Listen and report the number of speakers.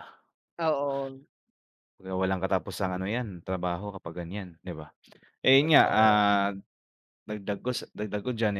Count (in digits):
2